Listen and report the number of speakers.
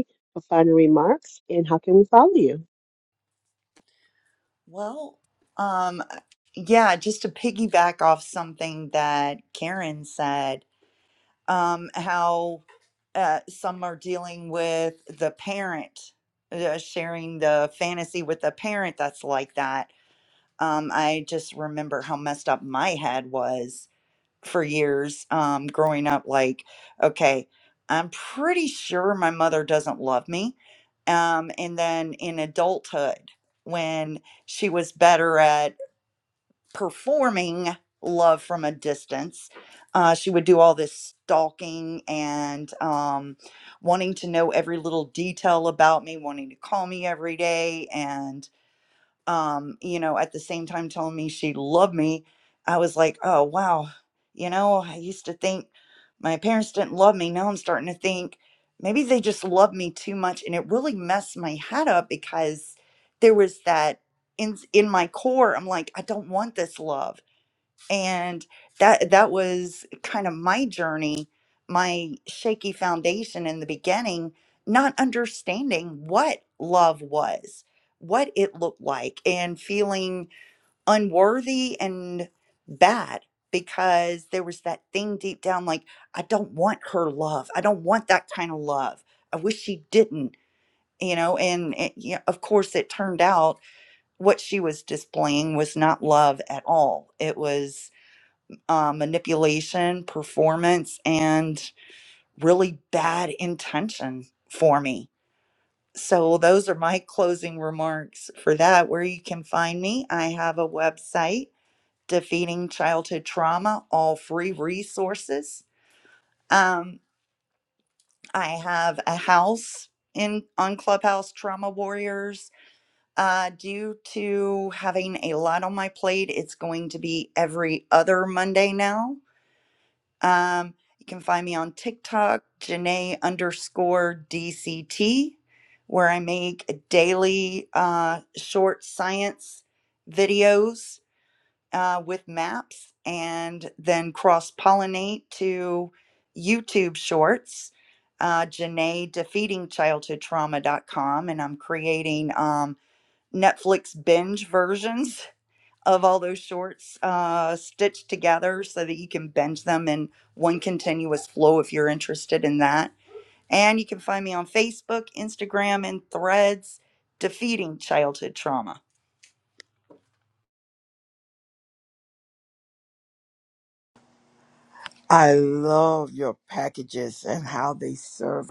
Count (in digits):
3